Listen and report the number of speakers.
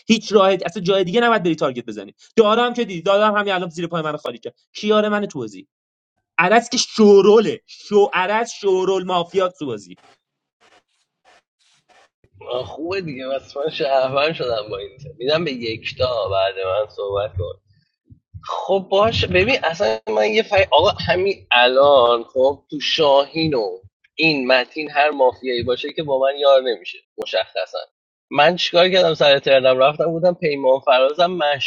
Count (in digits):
2